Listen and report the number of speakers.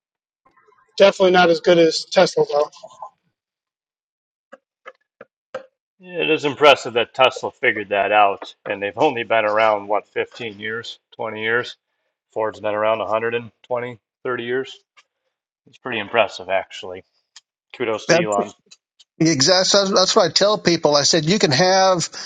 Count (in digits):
3